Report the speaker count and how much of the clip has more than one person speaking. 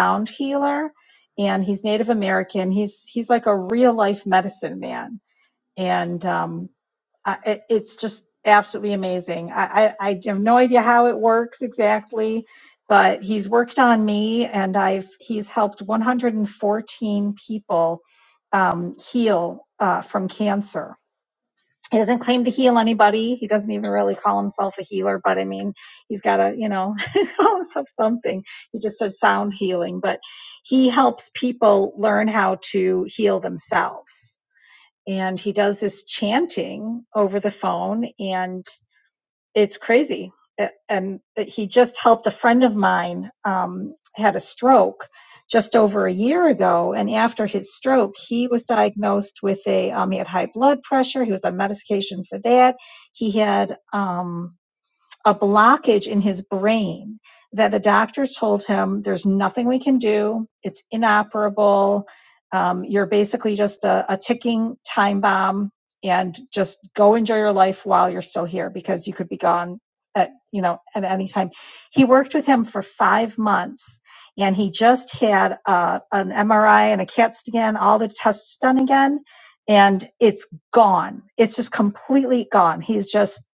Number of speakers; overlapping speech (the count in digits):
1, no overlap